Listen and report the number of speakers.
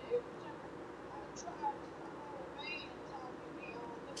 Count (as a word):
zero